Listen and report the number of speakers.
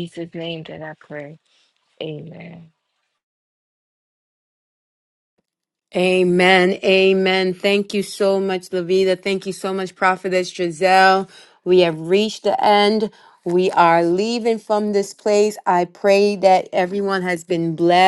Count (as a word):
two